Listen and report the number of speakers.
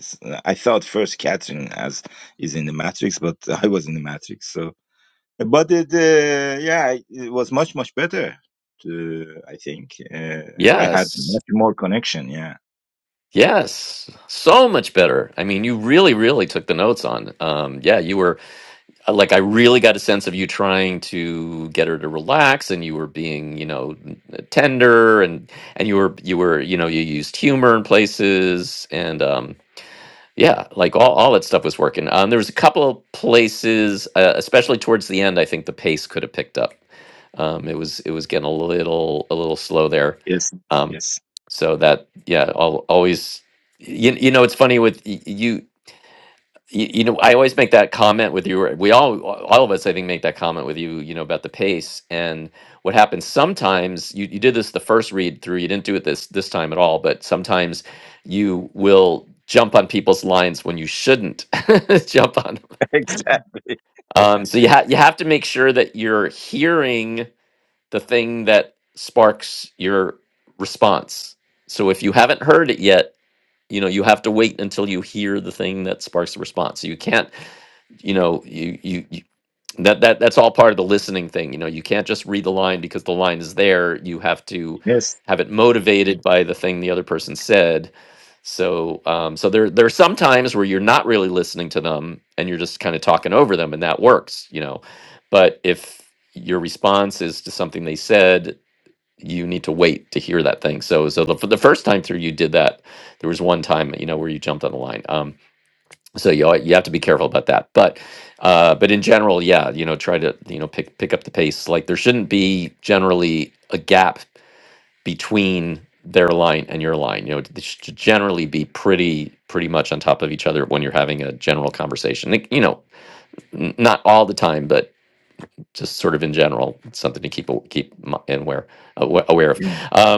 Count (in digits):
2